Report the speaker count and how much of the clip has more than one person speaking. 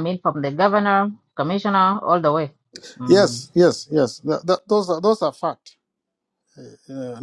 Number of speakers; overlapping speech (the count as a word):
two, about 4%